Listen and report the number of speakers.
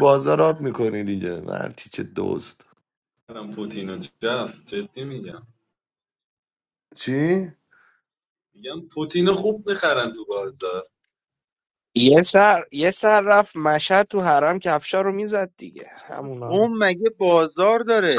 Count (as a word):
four